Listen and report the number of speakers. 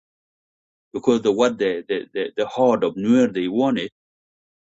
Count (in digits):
1